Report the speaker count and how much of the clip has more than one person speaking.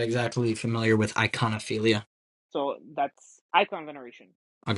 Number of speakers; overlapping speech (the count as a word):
two, no overlap